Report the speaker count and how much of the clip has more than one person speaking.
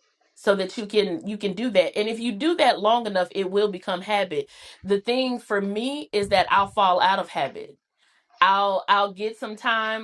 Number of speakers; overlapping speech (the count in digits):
1, no overlap